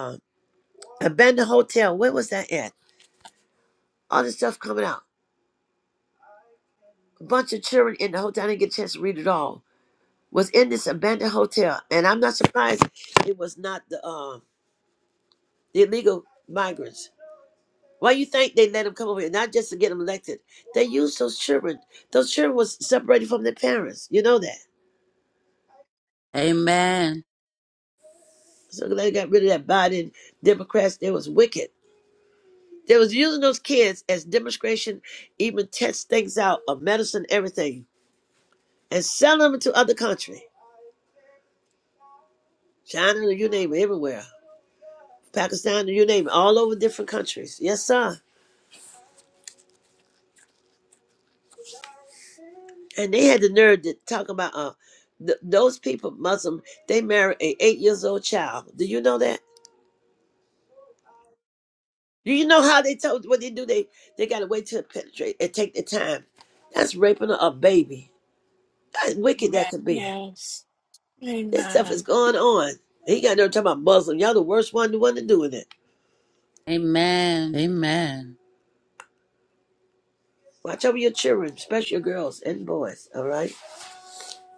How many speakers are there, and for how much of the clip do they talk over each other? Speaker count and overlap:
3, about 1%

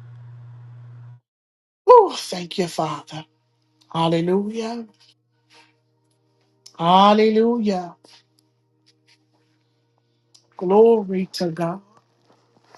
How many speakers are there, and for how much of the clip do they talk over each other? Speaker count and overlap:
1, no overlap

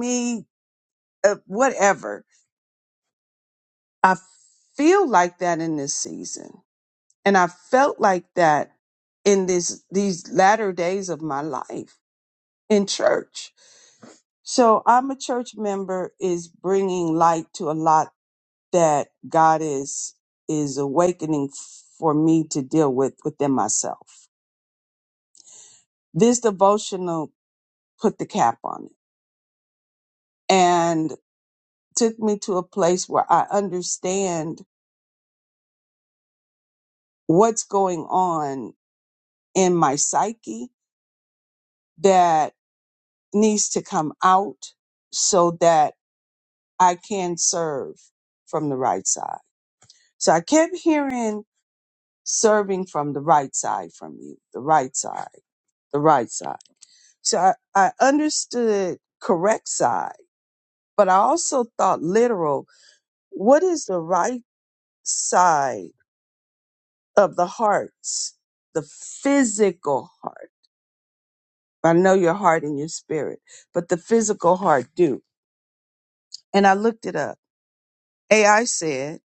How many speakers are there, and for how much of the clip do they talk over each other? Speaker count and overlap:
1, no overlap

